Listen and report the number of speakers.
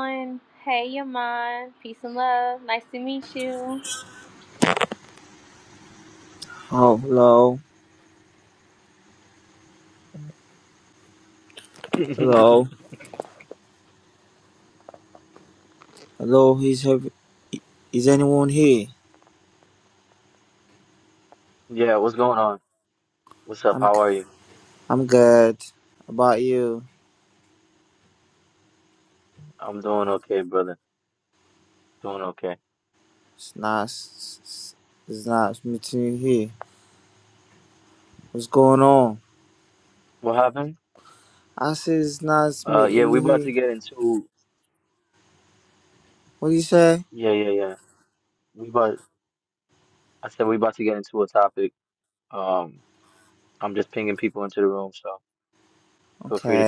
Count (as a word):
three